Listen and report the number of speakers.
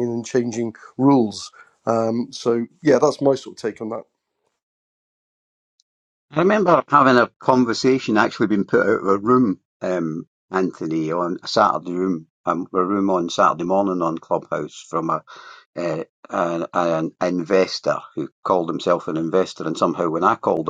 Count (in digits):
2